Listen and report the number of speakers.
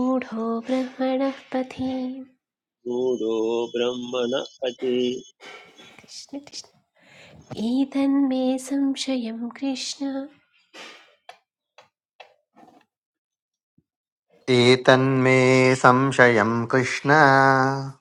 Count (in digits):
3